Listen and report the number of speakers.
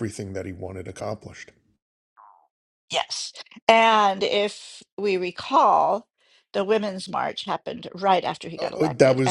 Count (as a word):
two